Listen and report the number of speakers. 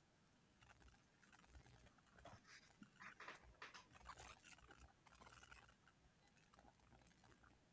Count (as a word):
zero